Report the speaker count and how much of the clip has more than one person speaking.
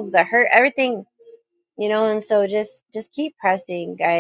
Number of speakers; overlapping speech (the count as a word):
one, no overlap